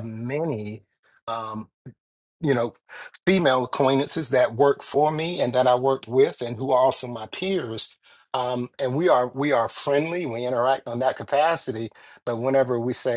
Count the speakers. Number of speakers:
1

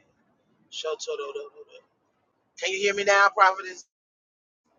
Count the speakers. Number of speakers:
1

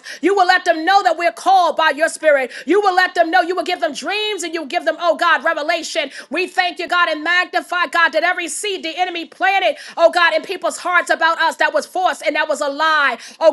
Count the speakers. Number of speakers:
1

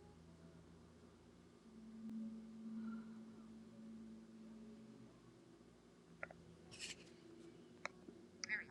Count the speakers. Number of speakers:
0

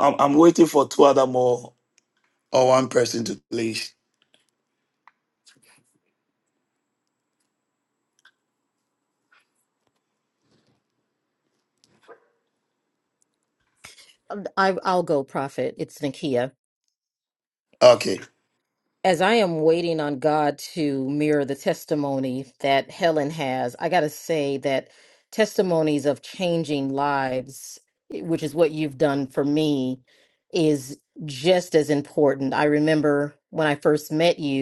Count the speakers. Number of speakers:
2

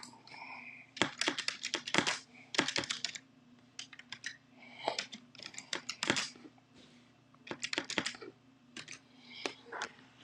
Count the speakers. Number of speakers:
0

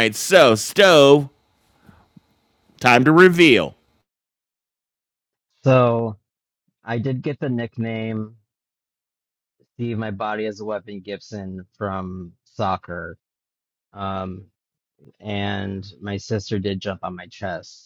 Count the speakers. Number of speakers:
2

